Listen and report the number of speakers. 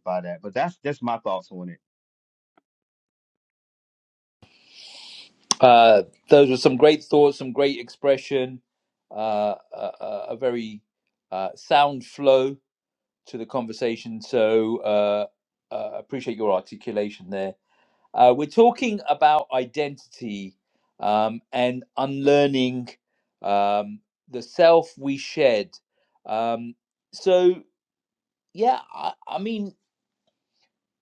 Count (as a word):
two